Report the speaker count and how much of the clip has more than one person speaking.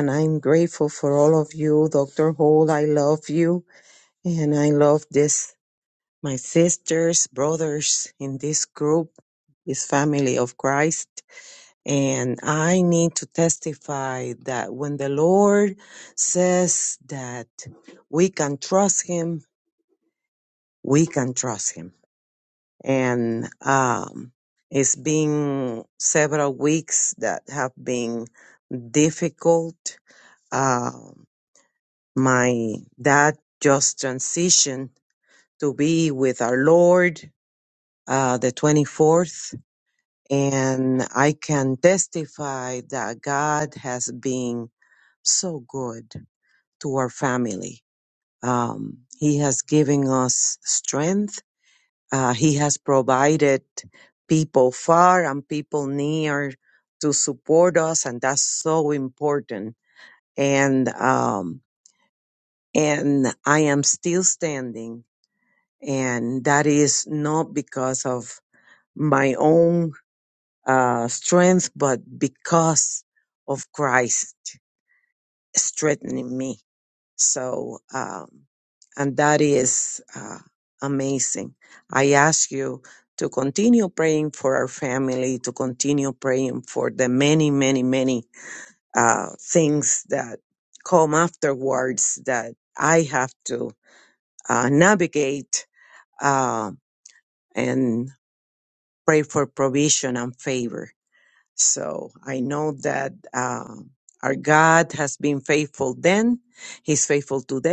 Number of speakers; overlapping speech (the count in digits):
1, no overlap